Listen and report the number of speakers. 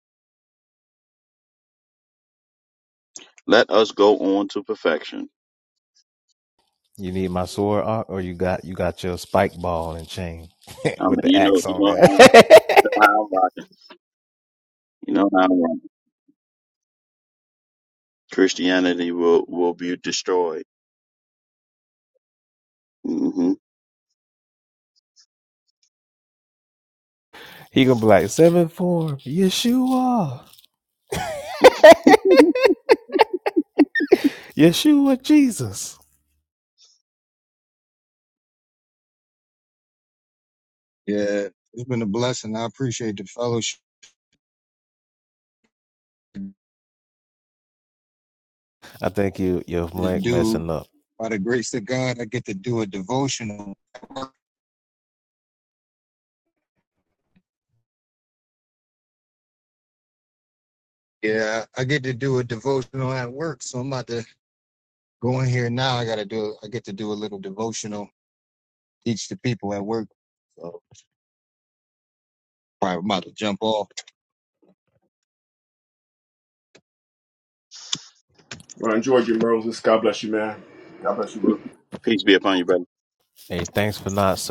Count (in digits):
4